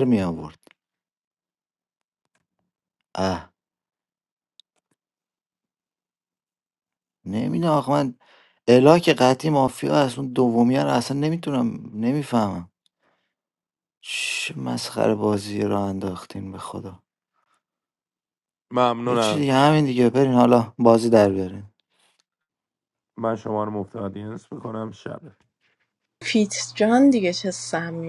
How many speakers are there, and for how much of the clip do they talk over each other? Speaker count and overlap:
3, about 1%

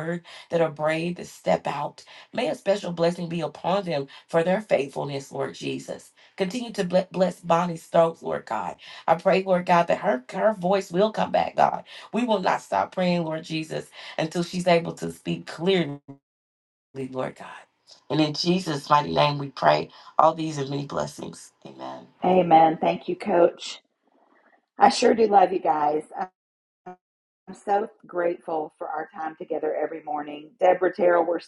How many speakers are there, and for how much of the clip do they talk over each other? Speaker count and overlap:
2, no overlap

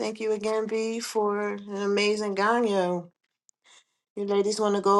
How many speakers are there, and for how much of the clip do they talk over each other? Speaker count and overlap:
1, no overlap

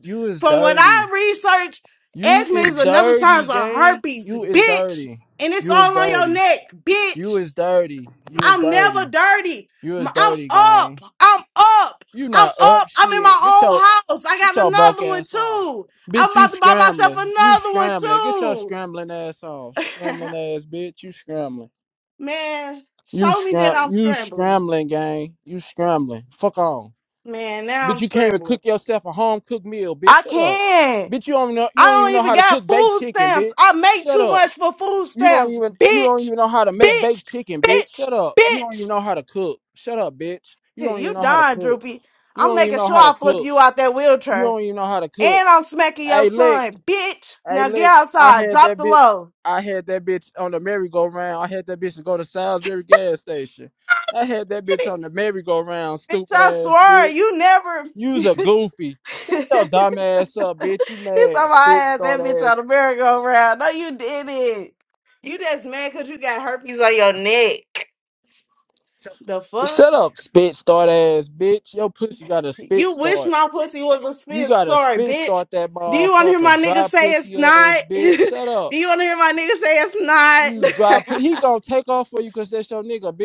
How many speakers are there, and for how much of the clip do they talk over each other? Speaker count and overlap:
2, about 34%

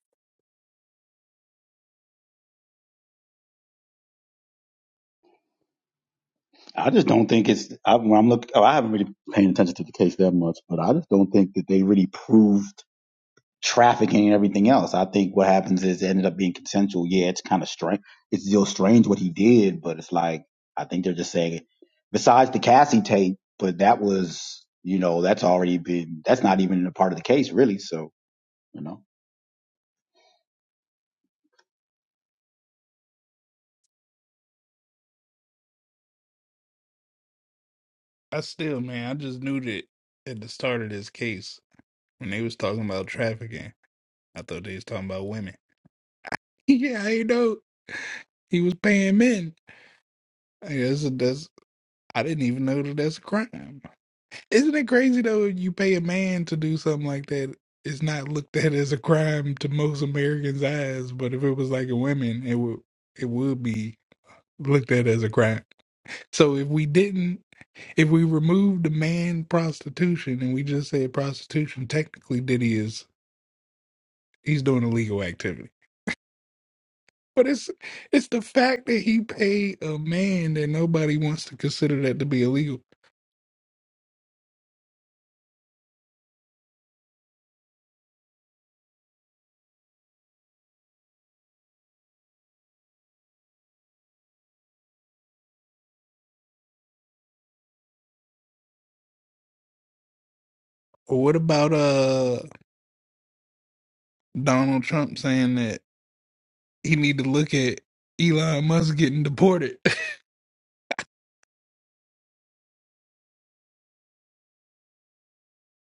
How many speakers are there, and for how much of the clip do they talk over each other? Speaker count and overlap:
2, no overlap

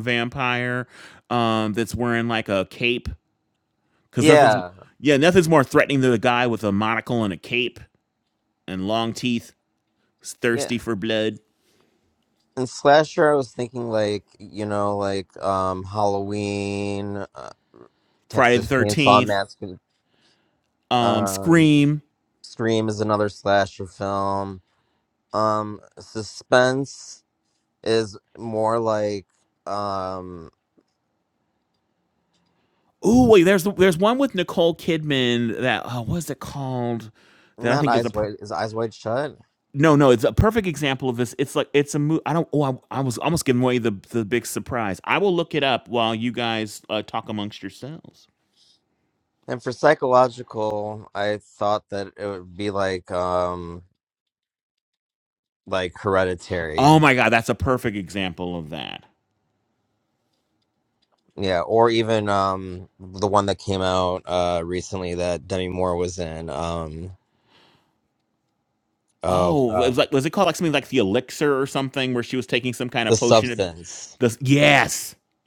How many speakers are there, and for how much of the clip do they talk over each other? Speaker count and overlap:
2, about 6%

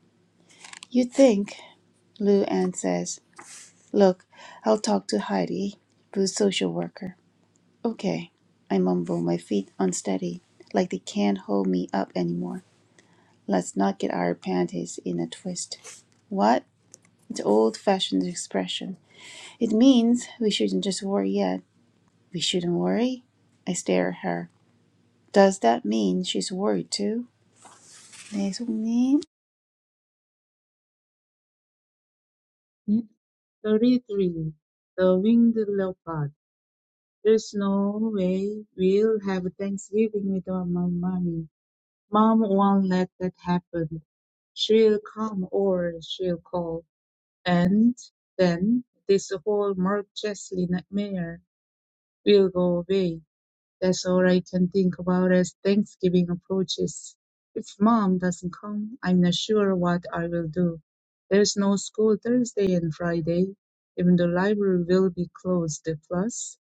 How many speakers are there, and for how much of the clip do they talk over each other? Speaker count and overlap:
2, no overlap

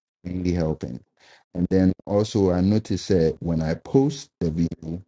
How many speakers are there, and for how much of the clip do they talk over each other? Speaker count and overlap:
1, no overlap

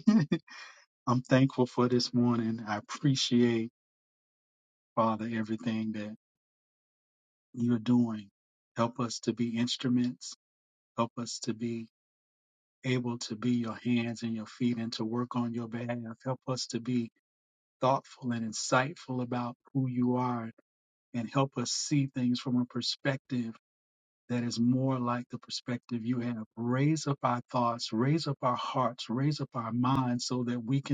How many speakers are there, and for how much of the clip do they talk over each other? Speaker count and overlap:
1, no overlap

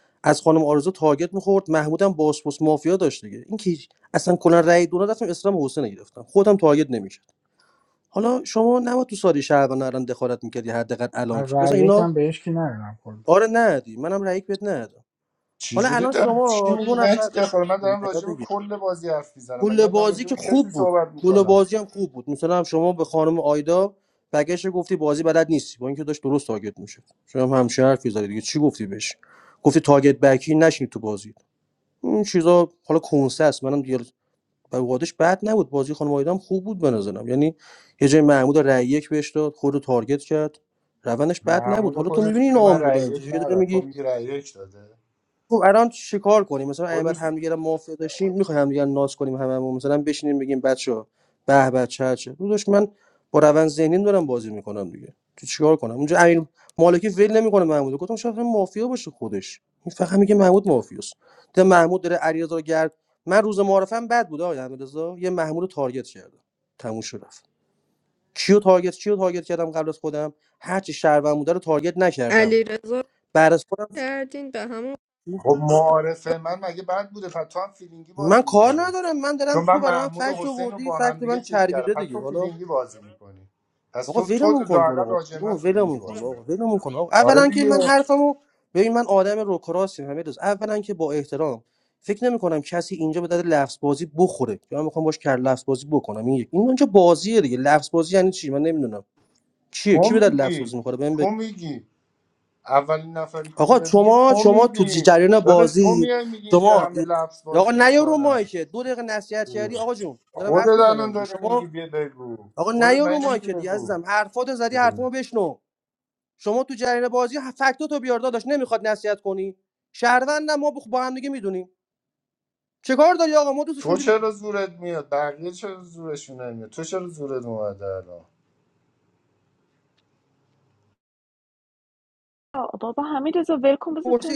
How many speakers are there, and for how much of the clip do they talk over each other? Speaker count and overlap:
5, about 16%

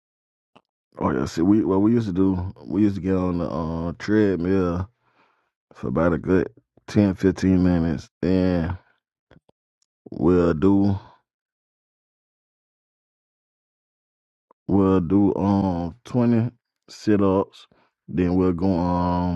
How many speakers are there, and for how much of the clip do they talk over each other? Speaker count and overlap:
1, no overlap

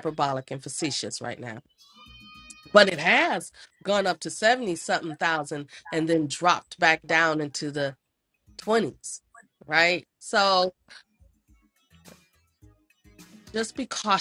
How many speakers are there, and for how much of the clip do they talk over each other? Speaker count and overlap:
1, no overlap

